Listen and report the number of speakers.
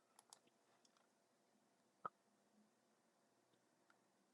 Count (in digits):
0